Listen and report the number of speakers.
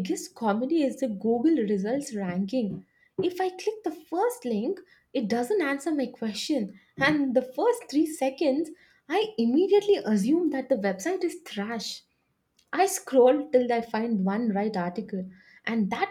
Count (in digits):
1